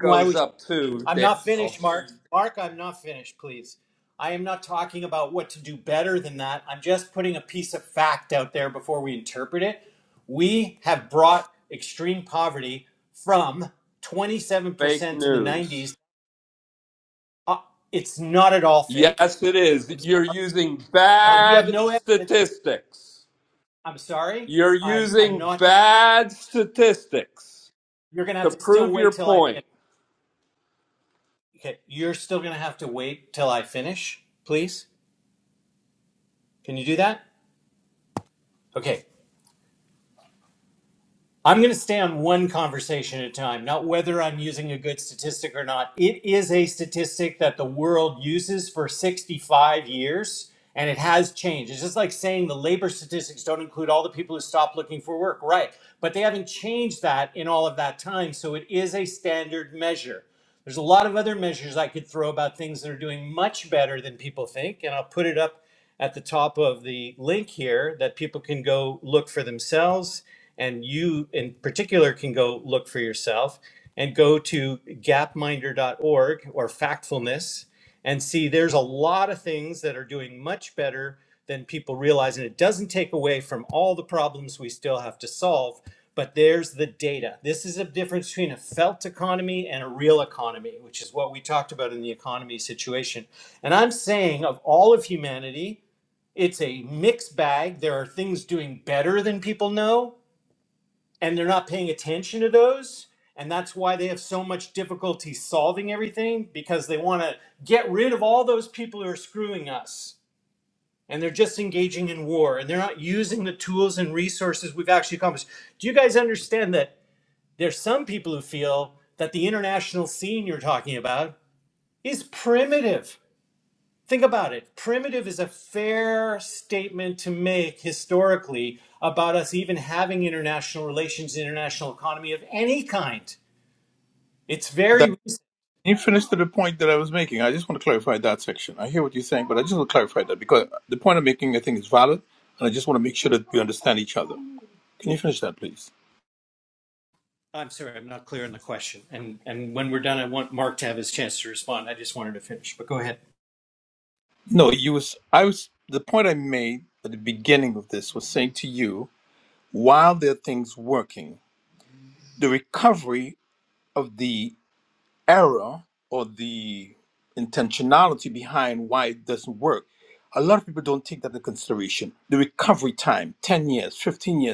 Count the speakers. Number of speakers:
3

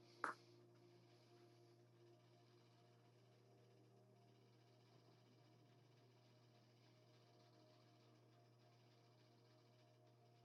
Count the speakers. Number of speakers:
0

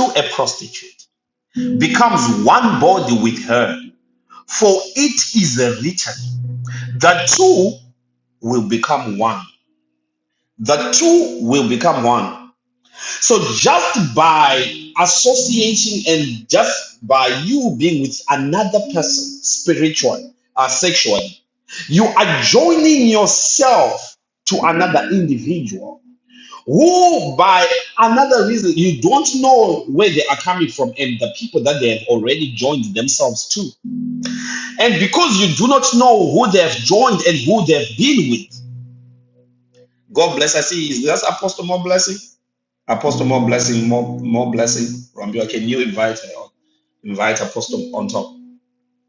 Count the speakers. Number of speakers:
1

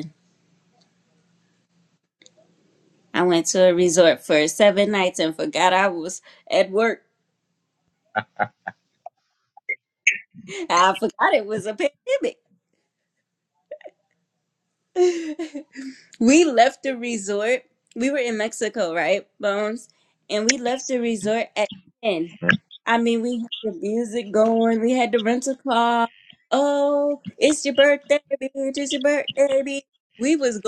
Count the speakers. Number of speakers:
1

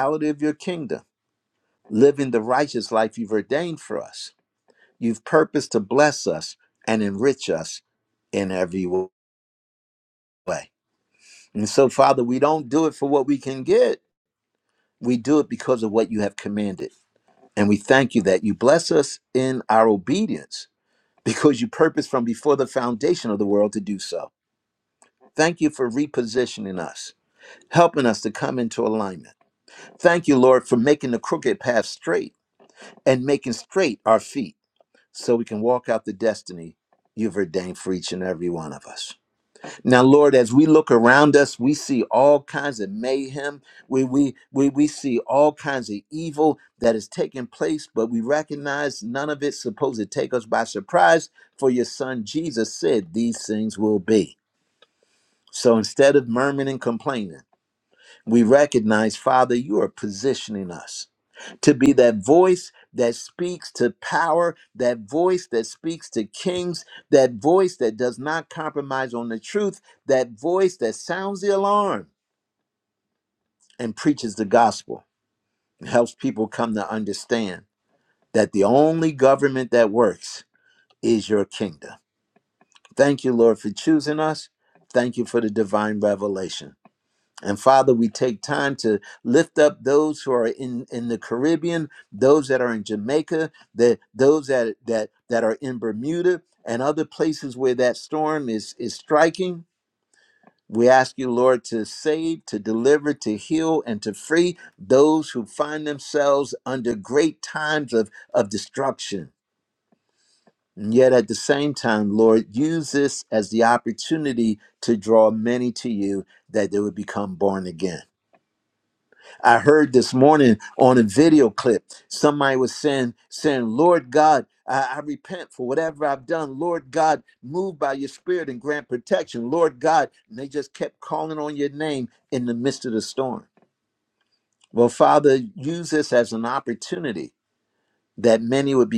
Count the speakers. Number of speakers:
1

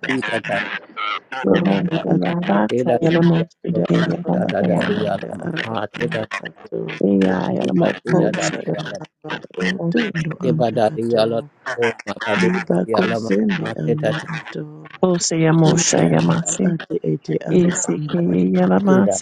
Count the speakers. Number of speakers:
3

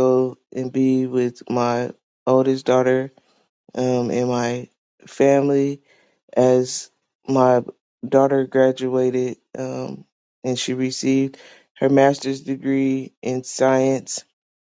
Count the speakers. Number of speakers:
1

